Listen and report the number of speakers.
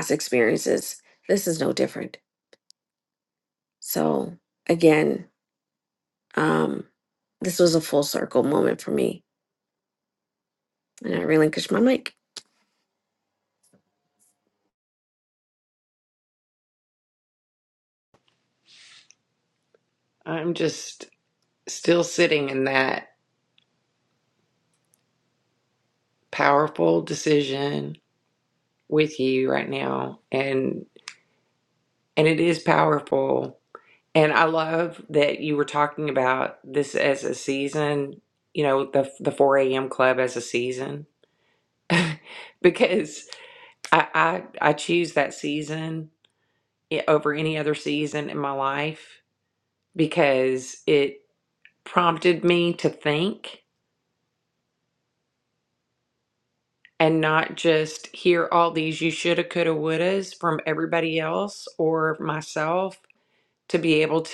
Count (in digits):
2